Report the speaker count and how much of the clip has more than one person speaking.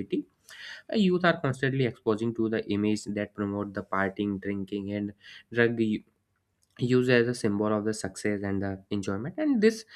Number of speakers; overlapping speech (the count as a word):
one, no overlap